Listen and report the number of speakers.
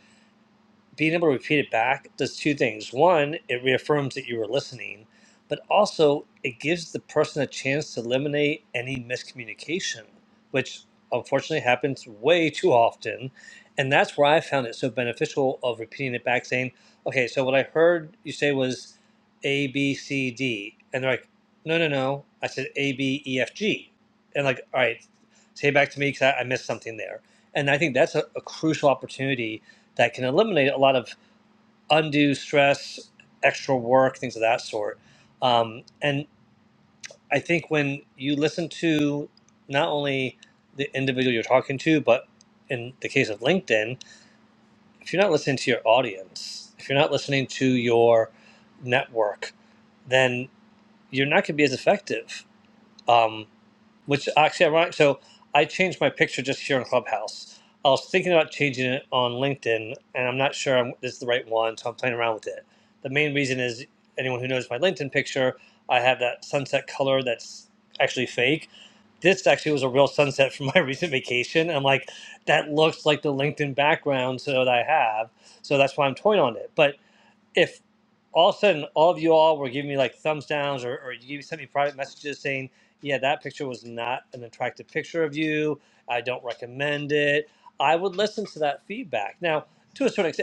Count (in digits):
1